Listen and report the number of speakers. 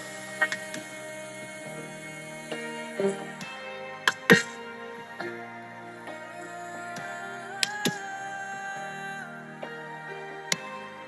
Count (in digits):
0